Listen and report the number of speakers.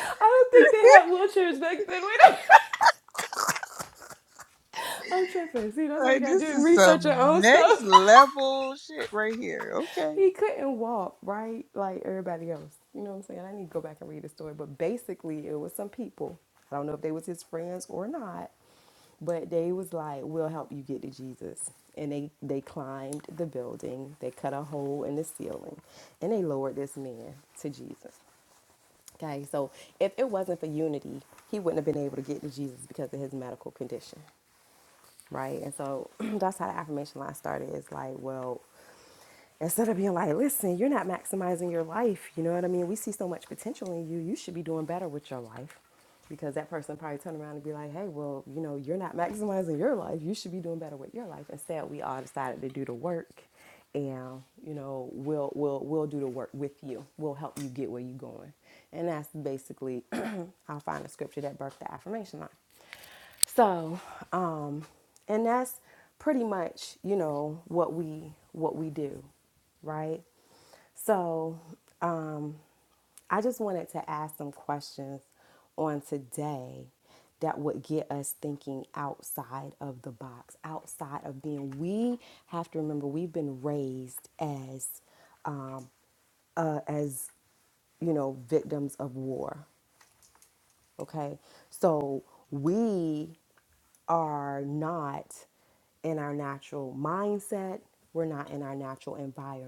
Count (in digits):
2